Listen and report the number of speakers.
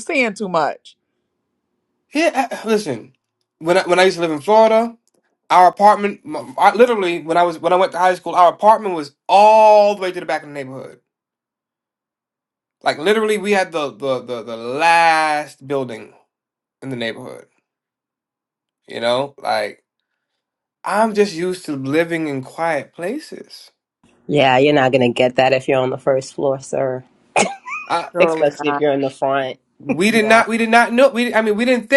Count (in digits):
3